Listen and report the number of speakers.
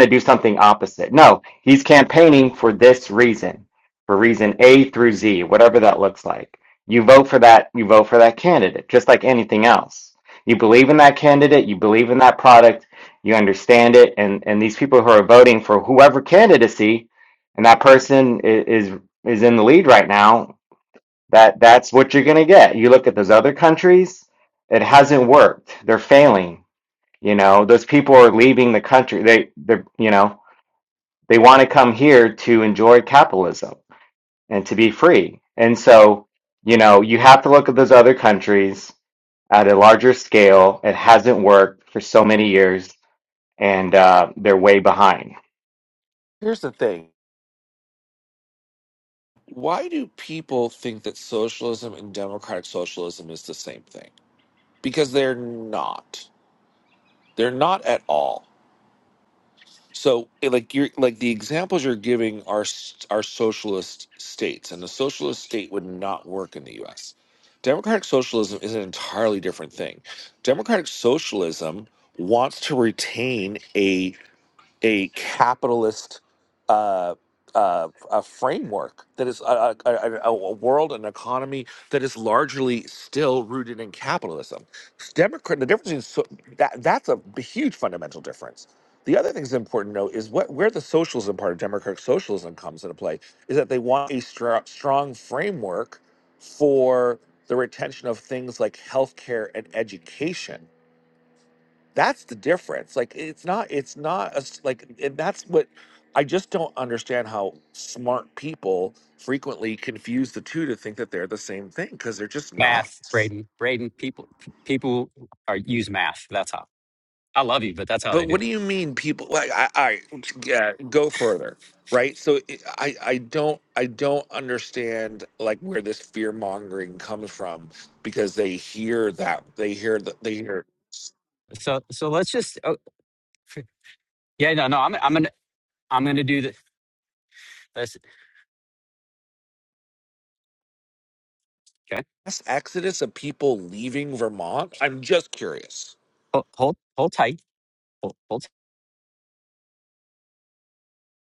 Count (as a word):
three